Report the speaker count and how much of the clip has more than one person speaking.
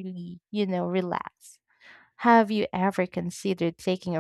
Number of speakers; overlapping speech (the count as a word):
one, no overlap